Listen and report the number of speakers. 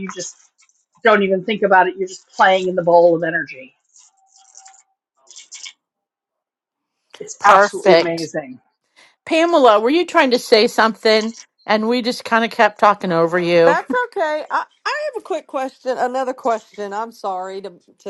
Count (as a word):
three